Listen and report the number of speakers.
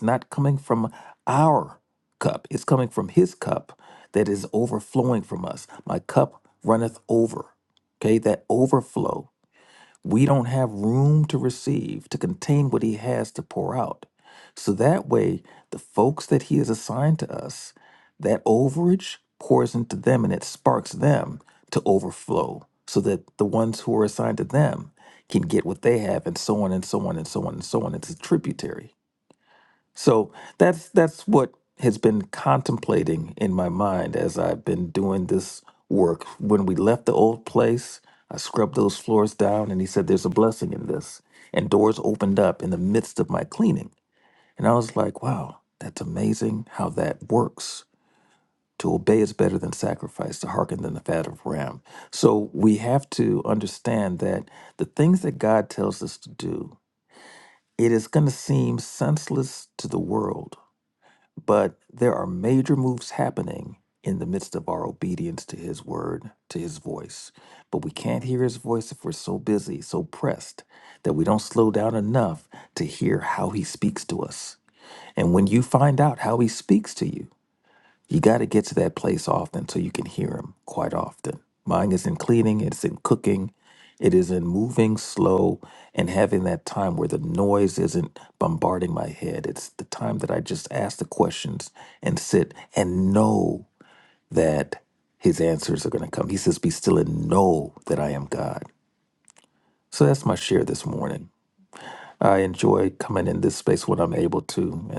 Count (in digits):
1